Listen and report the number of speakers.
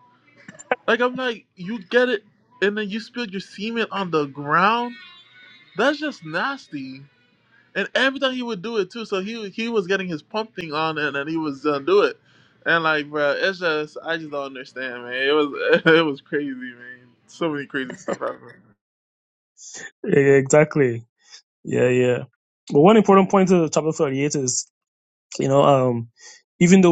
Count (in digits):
2